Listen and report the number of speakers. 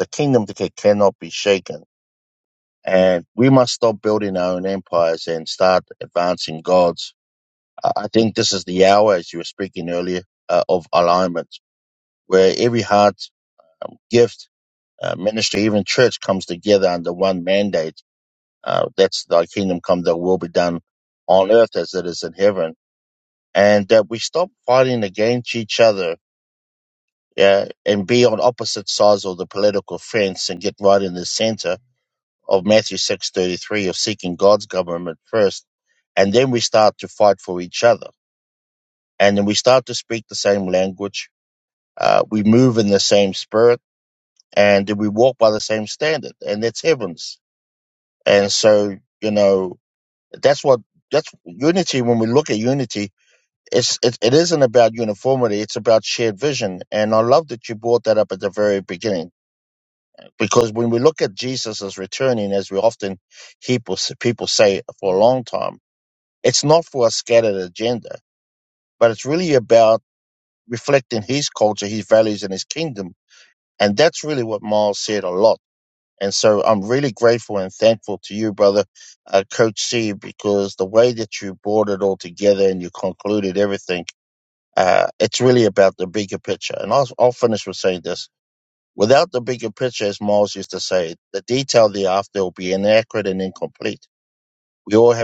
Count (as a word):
one